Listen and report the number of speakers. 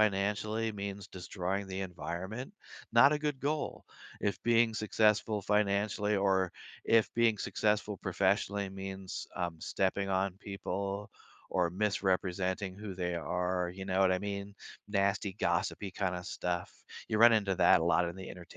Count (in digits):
1